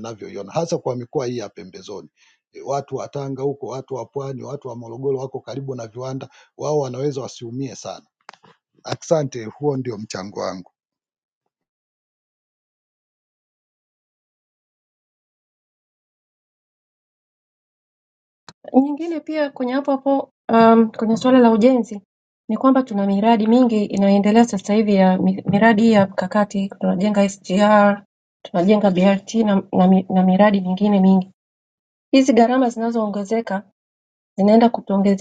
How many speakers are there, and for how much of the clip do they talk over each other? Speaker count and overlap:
2, no overlap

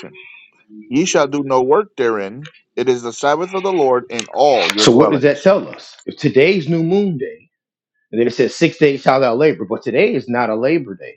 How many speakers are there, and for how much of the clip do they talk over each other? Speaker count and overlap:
2, about 7%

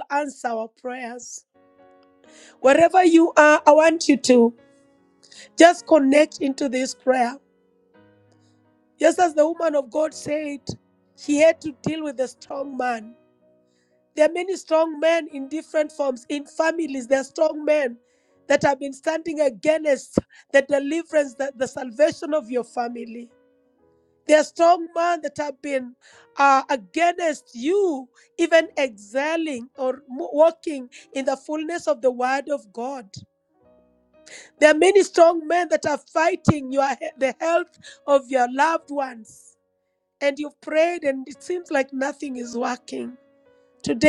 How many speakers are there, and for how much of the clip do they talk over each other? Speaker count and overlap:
1, no overlap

